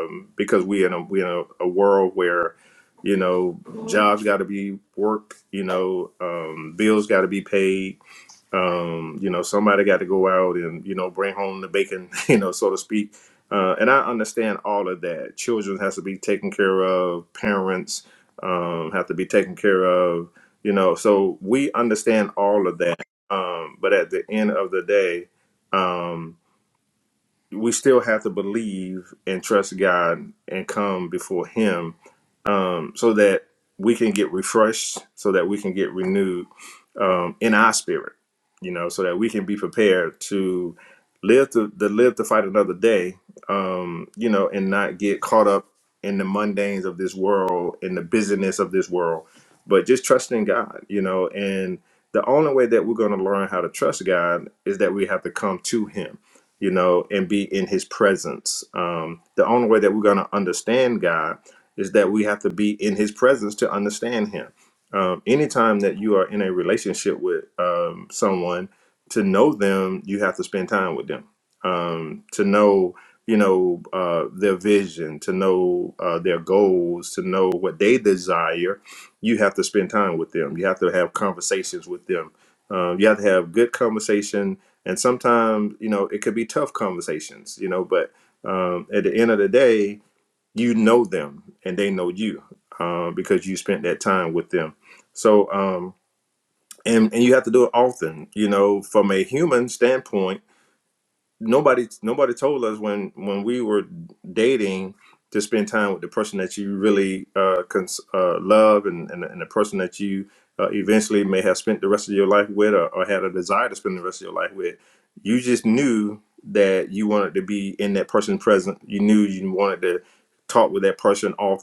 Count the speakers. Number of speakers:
one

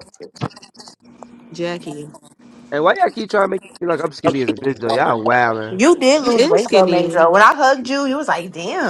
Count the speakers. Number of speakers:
three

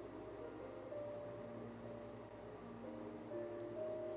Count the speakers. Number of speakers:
zero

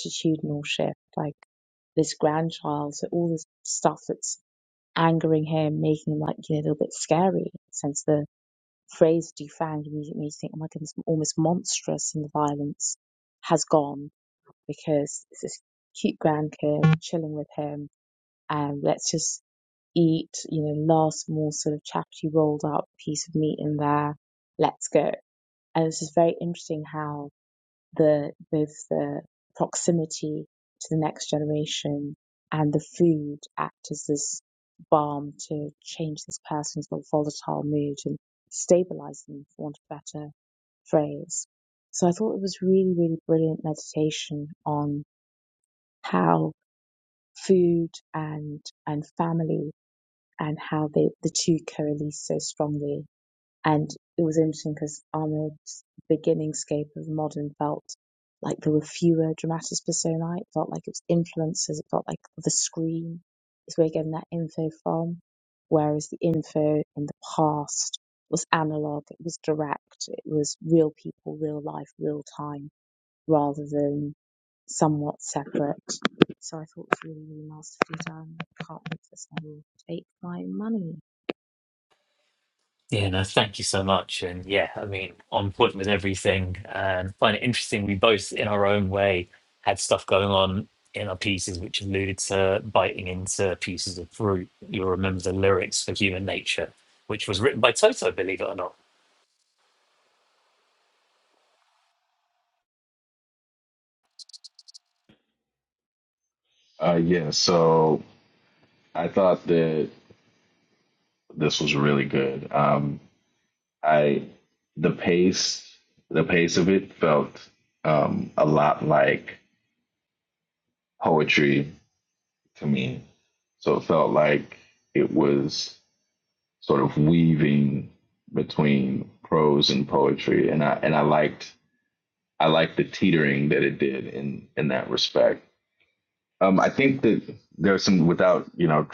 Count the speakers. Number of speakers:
three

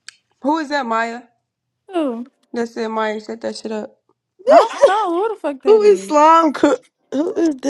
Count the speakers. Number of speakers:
three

